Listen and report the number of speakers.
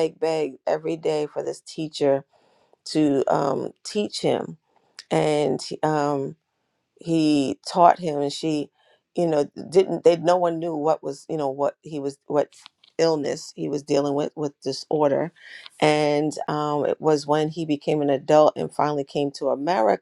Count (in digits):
1